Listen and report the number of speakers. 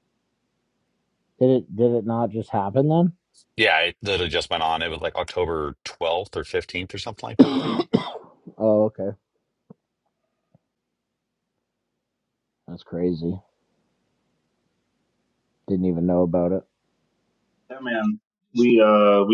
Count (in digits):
3